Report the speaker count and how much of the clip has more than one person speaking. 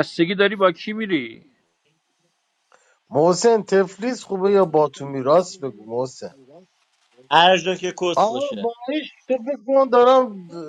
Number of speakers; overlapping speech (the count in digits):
3, about 4%